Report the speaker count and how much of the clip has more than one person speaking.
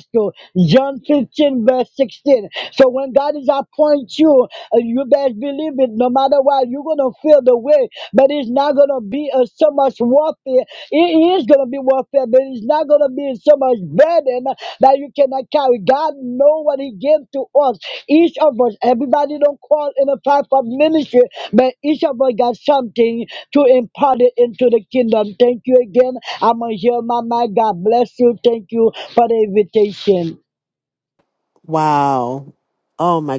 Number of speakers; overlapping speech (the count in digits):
2, no overlap